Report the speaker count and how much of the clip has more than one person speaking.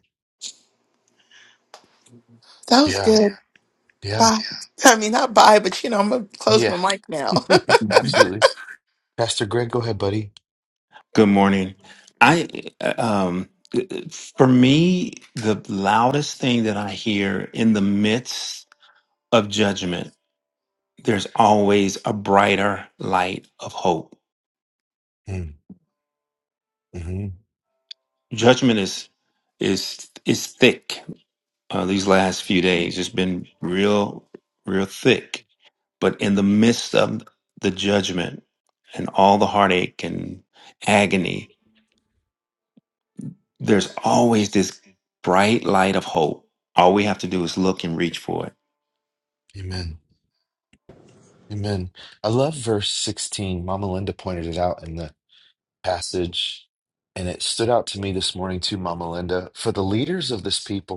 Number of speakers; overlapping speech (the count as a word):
three, about 1%